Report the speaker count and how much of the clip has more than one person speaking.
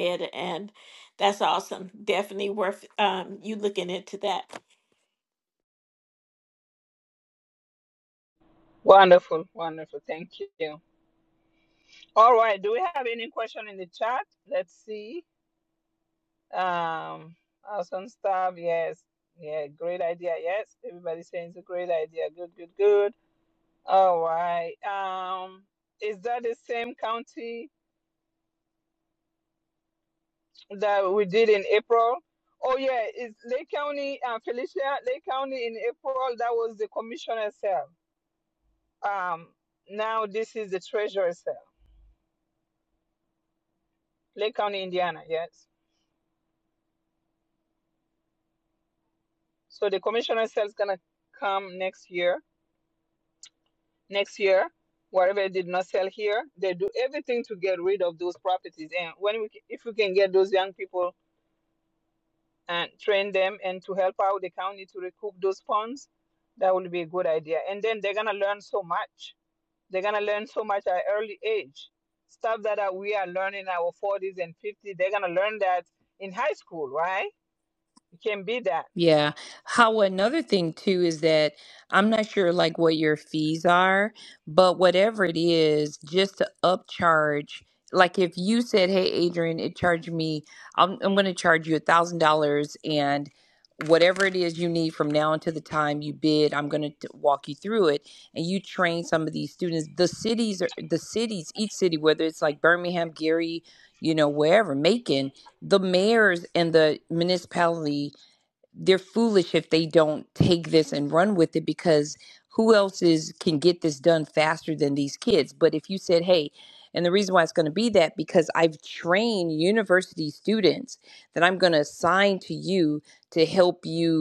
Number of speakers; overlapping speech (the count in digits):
3, no overlap